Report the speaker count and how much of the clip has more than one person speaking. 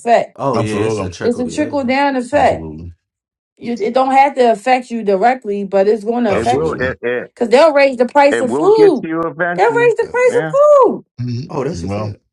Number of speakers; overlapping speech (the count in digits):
4, about 31%